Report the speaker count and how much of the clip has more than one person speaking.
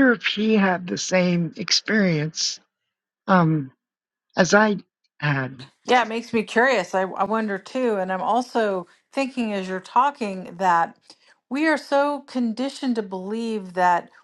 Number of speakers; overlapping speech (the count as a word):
two, no overlap